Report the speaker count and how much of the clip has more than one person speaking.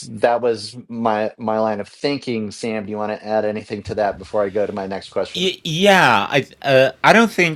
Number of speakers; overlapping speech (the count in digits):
2, about 2%